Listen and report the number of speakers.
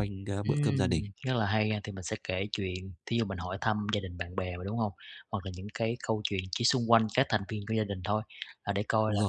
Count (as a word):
two